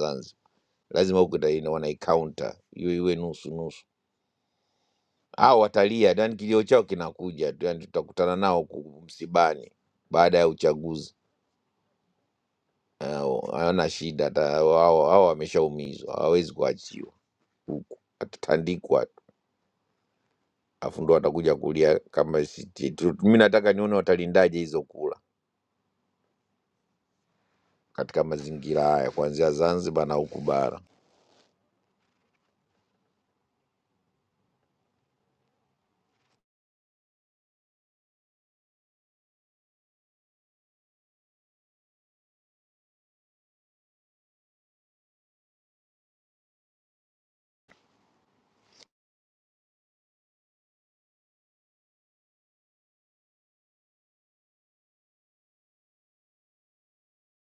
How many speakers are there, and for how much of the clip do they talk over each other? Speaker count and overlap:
1, no overlap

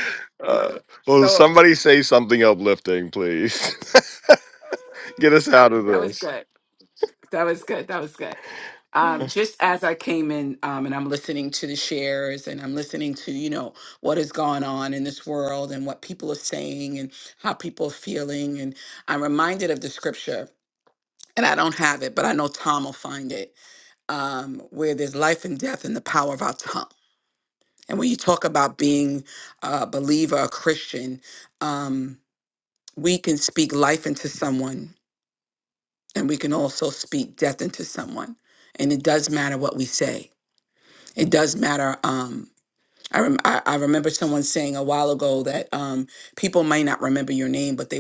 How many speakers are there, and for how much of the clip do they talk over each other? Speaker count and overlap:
2, about 1%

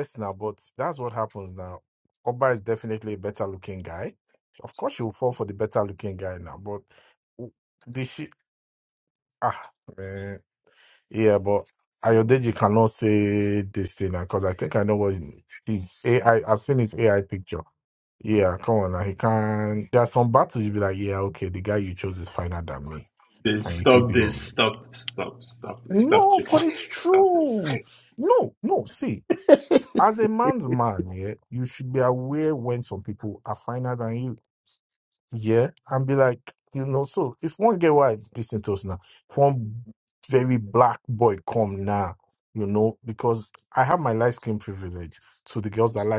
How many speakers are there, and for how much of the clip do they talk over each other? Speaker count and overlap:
2, about 5%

